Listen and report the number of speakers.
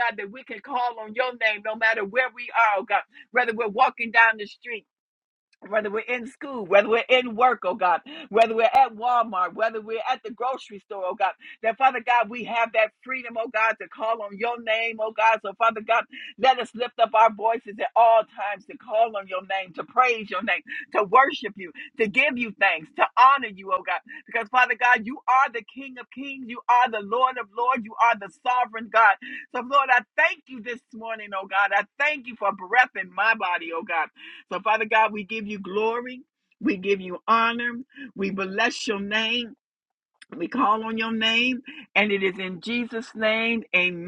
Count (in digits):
1